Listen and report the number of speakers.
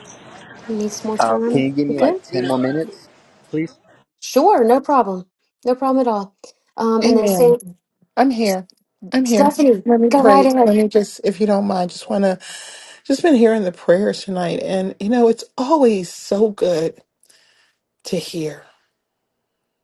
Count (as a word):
three